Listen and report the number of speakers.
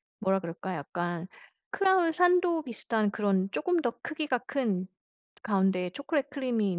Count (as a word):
one